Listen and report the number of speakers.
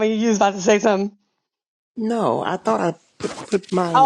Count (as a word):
two